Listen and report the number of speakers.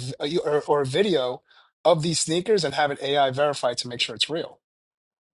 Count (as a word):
one